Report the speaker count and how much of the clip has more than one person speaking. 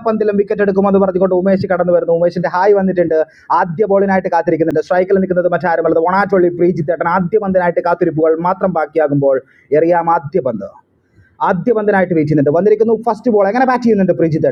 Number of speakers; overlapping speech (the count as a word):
one, no overlap